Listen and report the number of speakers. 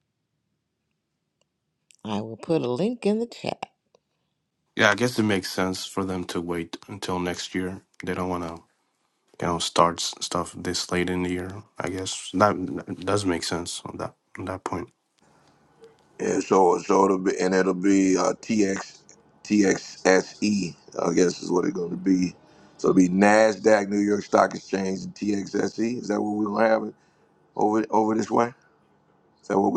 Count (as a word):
three